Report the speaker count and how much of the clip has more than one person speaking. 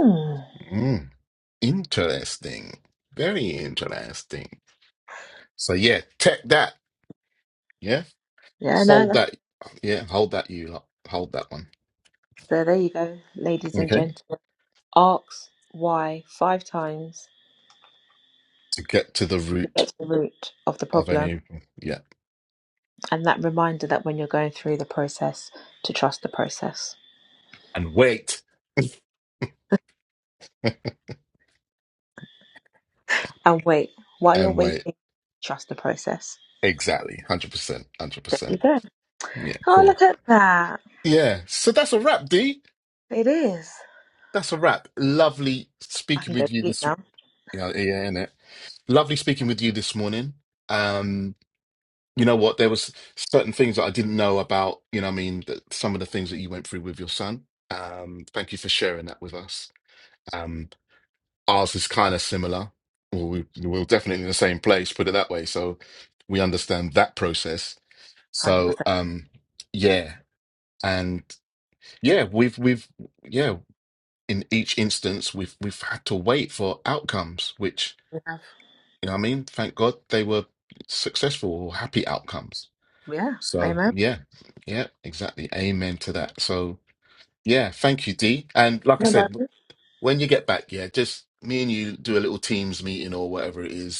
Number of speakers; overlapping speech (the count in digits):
2, about 4%